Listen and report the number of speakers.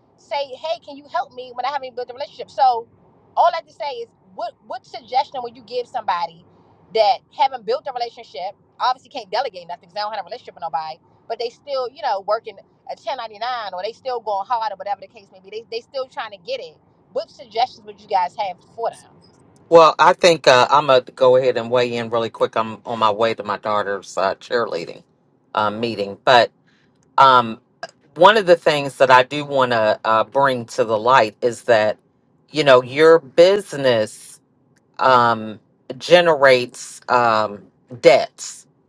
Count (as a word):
two